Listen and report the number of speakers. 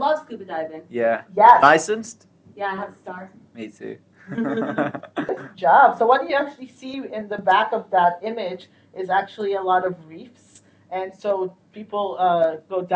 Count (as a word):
three